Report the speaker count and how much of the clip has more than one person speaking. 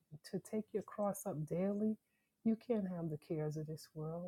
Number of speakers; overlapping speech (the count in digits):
1, no overlap